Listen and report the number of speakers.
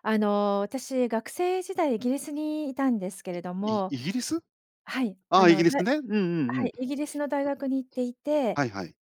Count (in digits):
2